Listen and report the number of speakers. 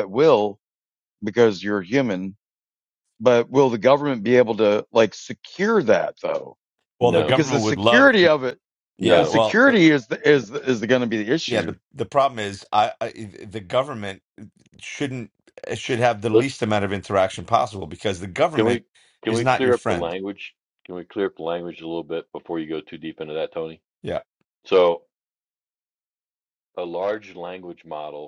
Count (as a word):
three